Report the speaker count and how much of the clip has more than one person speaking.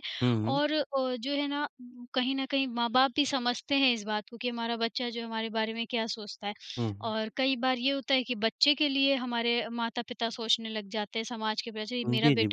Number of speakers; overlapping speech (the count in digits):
2, about 5%